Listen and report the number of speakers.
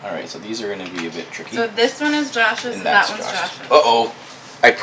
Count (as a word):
two